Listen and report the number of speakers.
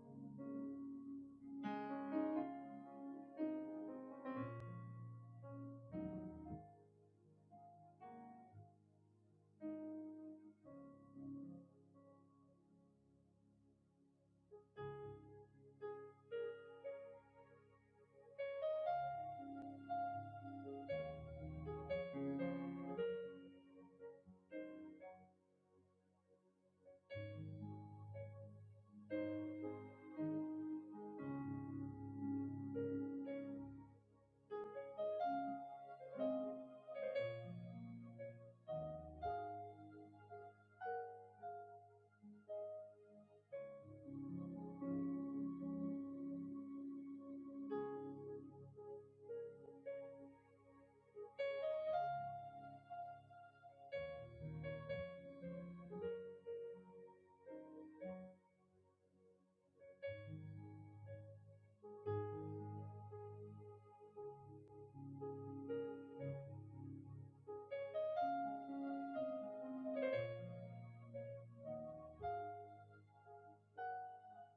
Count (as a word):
zero